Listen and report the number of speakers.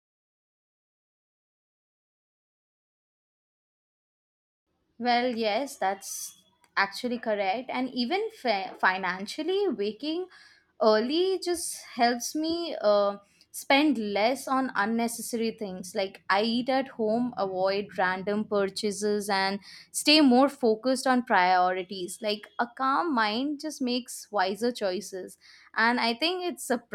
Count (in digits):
1